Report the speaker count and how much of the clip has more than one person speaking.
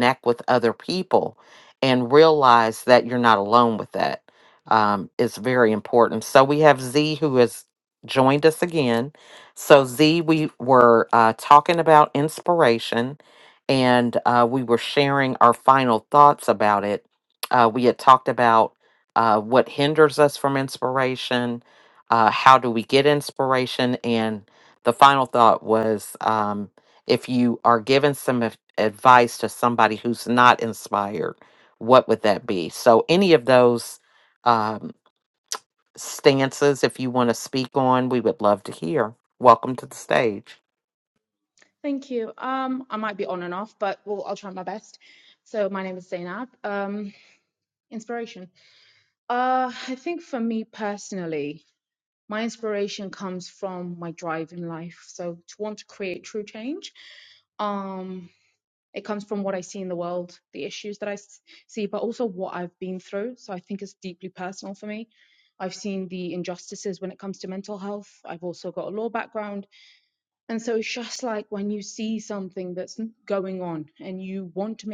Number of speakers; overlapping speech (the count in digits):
2, no overlap